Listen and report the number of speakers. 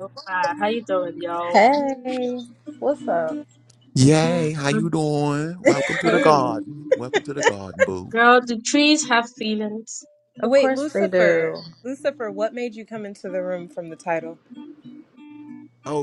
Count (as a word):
four